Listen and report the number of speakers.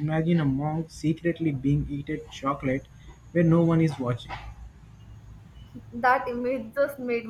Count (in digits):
2